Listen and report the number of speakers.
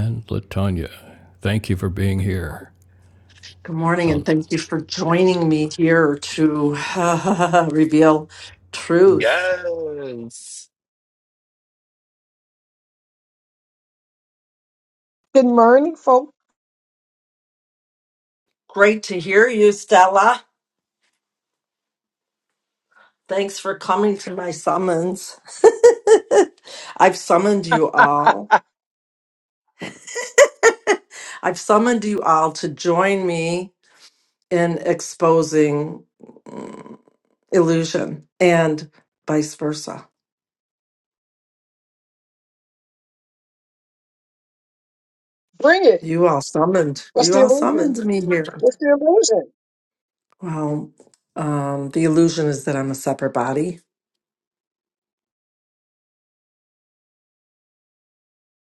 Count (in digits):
4